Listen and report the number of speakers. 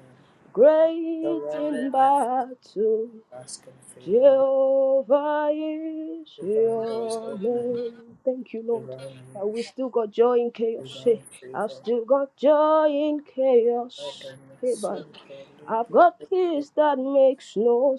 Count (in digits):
2